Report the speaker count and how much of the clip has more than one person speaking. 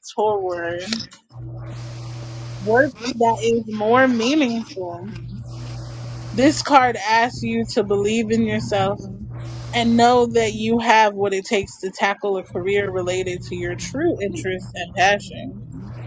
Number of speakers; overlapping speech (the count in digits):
1, no overlap